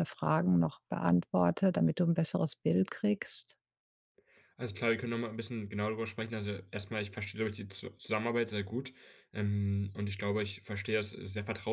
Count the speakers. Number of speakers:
2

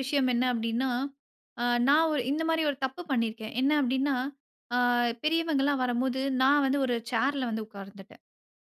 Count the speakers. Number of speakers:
1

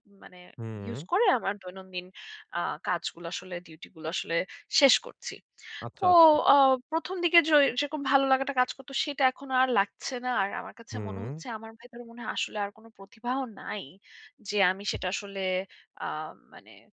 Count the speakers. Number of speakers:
2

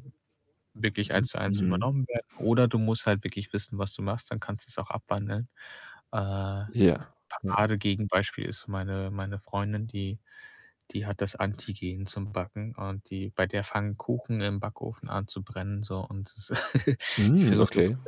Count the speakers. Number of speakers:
2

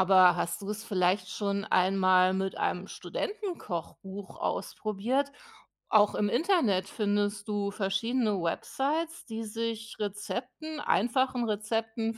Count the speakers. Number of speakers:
1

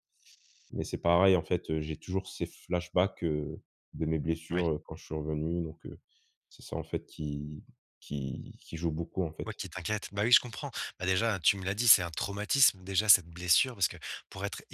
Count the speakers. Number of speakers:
2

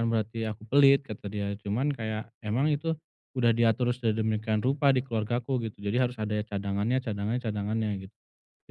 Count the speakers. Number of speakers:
1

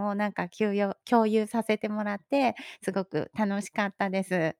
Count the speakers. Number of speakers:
1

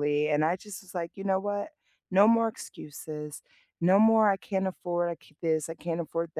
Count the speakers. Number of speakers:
1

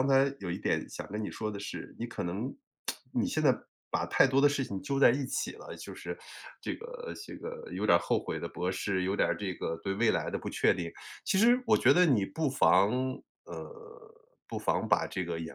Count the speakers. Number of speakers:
1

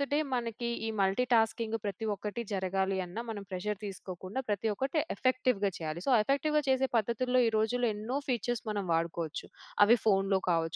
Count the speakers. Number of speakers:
1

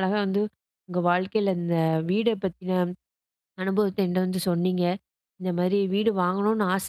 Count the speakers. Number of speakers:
1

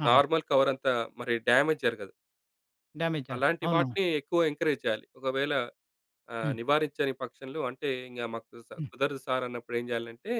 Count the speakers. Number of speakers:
2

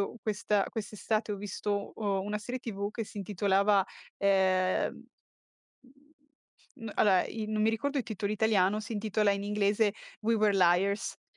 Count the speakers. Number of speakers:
1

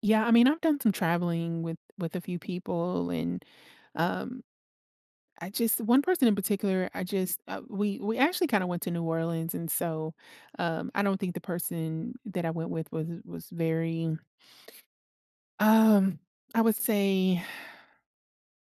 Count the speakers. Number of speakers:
1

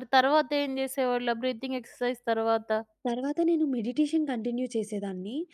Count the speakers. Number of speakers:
2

